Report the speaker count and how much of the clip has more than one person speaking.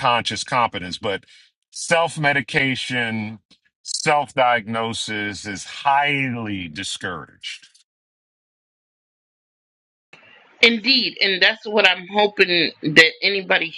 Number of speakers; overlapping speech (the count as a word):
two, no overlap